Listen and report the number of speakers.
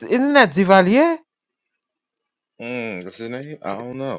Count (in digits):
2